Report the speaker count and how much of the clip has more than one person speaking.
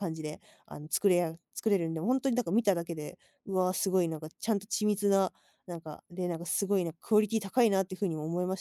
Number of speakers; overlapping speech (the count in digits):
1, no overlap